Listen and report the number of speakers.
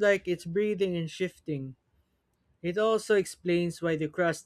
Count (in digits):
1